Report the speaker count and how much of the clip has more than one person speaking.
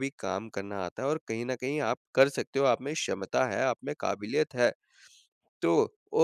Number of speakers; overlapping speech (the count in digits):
1, no overlap